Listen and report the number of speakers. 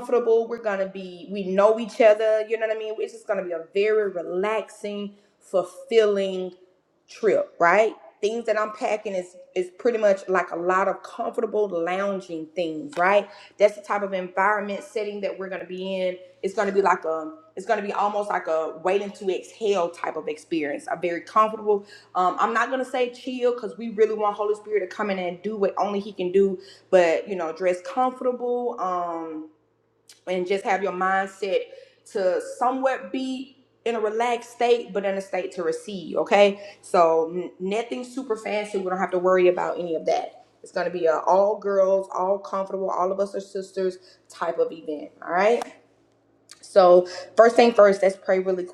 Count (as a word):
one